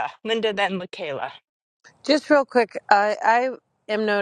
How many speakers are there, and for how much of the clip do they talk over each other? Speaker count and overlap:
2, no overlap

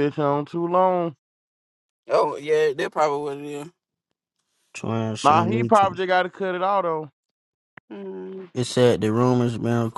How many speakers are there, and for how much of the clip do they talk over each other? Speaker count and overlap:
3, about 7%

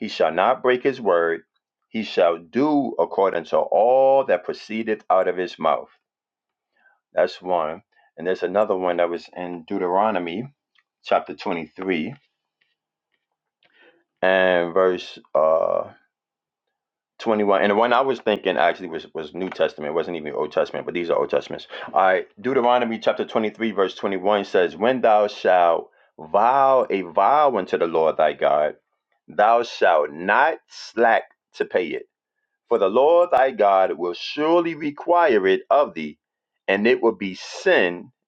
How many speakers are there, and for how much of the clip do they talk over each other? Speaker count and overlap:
1, no overlap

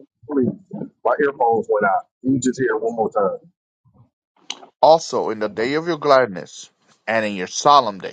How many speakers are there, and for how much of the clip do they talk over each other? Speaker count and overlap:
2, no overlap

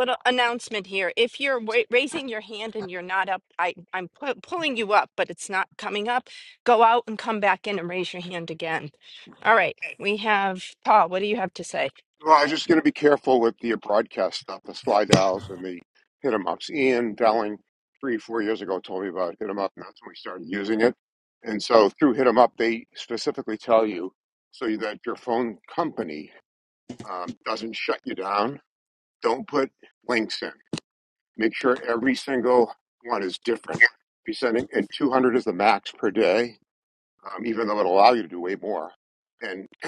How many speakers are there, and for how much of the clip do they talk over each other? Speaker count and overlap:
2, no overlap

